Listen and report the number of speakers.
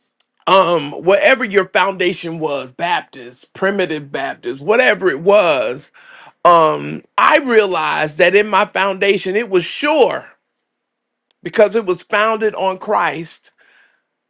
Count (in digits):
1